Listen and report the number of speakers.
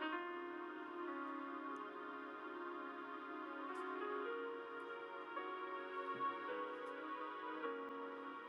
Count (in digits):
0